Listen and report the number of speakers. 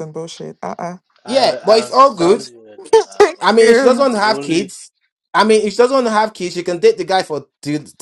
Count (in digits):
3